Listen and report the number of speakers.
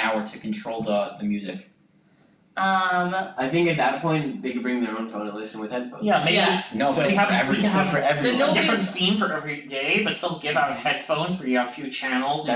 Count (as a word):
four